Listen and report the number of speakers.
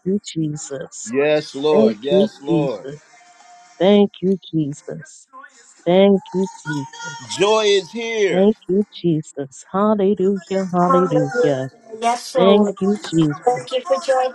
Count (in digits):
3